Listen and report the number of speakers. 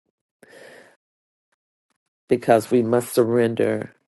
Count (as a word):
one